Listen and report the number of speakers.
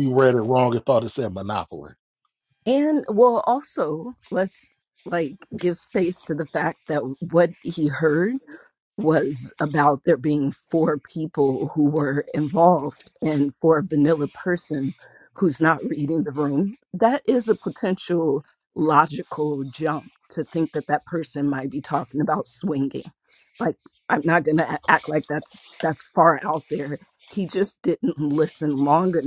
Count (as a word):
two